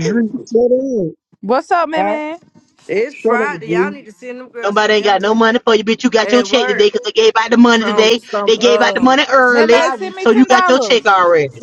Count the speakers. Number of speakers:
4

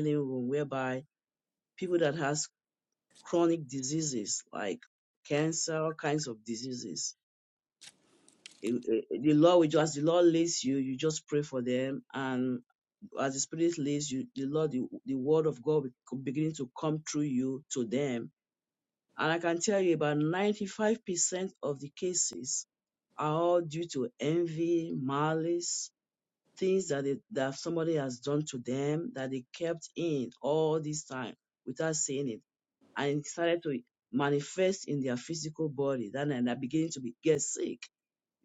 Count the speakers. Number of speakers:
1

